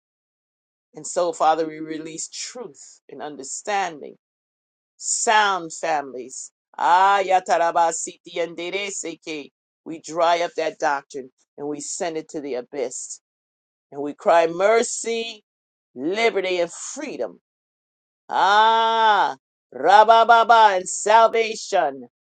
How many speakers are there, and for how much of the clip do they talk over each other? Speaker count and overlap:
one, no overlap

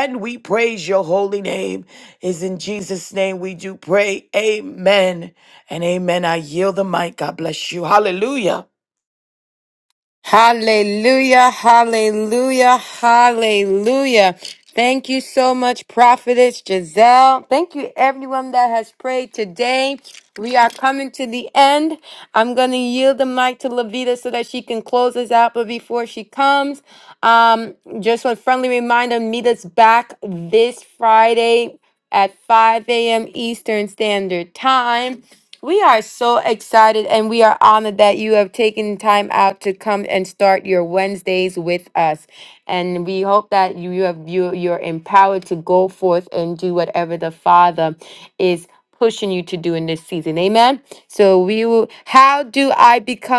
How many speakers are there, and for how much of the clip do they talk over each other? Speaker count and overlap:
two, no overlap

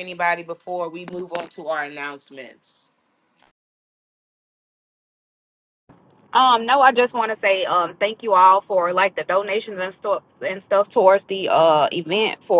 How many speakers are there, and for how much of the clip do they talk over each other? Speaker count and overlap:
two, no overlap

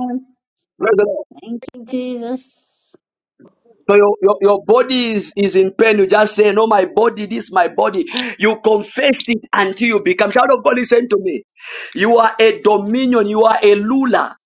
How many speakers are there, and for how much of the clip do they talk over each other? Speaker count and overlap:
two, no overlap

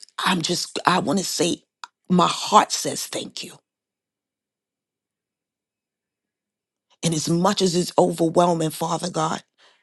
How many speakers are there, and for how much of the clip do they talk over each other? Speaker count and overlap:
one, no overlap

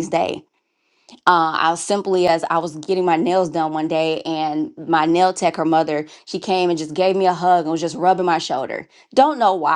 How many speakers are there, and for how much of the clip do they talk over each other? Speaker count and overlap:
one, no overlap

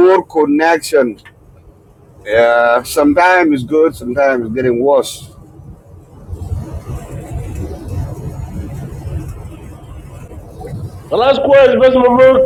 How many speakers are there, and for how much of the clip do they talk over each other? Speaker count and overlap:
two, no overlap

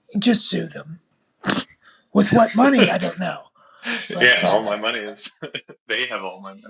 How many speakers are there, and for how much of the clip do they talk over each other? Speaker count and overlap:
two, about 8%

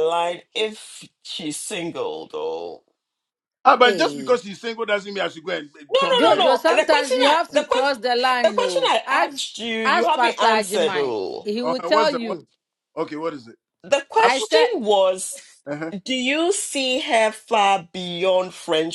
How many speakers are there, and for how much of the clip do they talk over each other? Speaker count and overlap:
three, about 31%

